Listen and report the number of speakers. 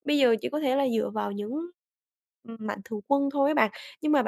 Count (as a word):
one